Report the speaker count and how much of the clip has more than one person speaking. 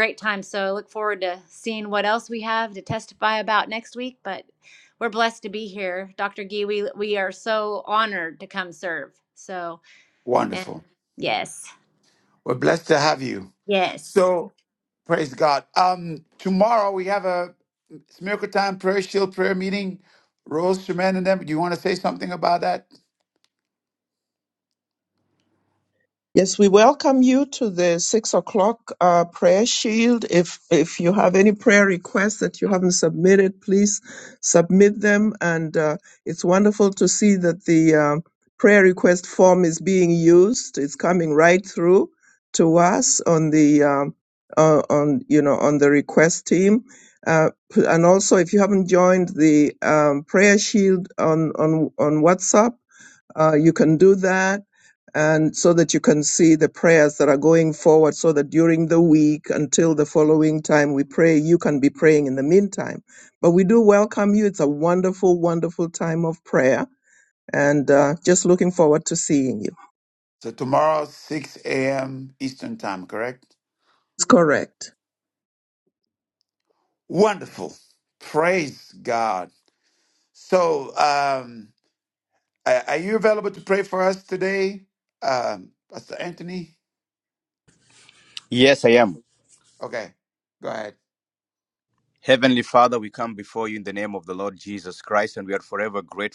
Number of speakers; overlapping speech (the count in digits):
4, under 1%